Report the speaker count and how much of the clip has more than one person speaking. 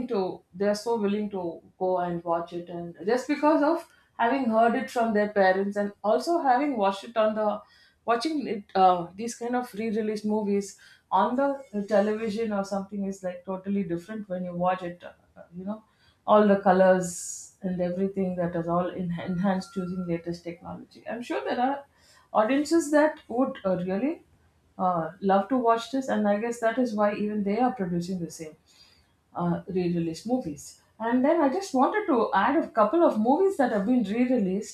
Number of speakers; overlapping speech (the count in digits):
1, no overlap